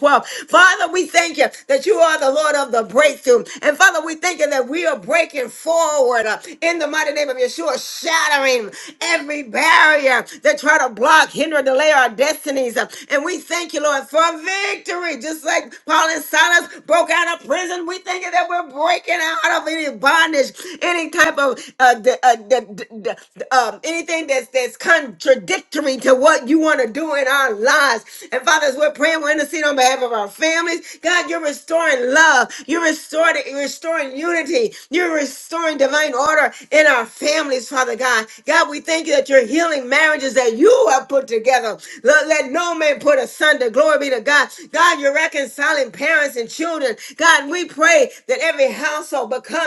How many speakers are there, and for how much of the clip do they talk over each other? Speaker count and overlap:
one, no overlap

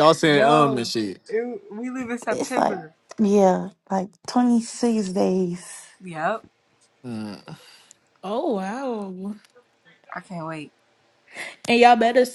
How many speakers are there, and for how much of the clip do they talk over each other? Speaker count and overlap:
four, about 9%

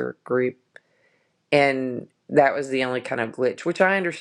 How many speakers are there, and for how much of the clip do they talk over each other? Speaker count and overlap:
one, no overlap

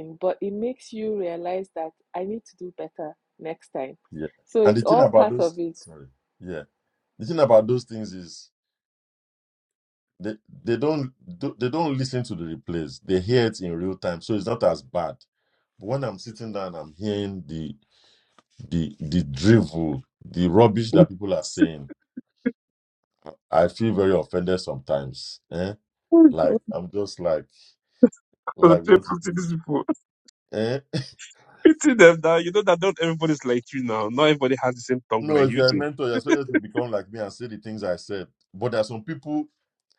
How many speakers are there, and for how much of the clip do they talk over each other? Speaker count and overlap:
three, about 5%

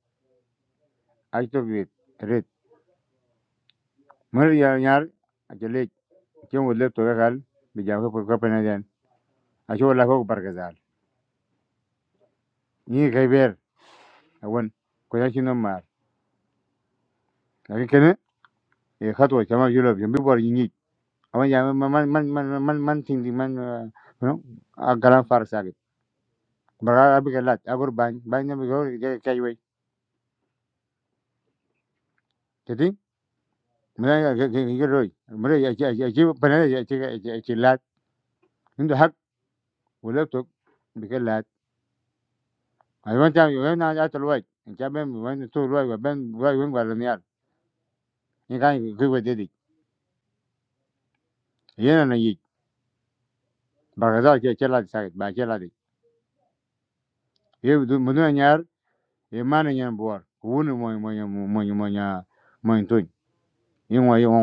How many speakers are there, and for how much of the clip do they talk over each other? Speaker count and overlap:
one, no overlap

